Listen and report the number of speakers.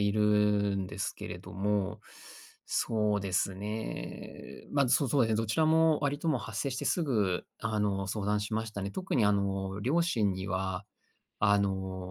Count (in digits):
1